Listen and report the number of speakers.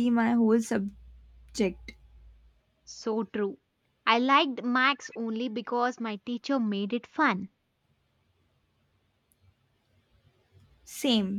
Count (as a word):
two